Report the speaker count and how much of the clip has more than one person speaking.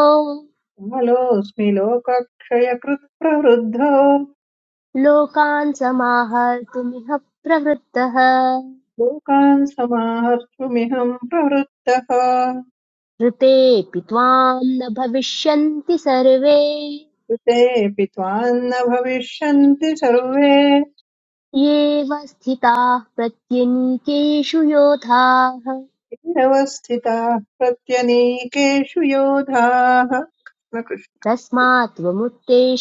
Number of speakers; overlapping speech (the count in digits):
2, no overlap